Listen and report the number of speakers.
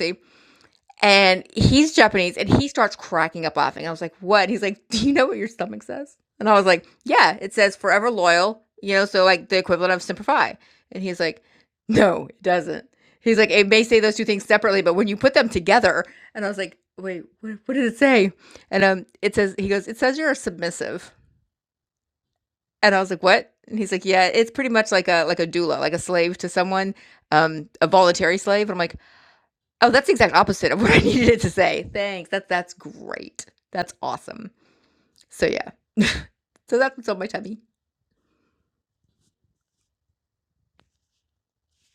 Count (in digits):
1